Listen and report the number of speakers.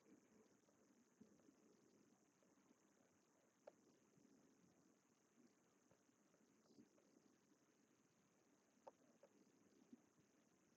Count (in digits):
0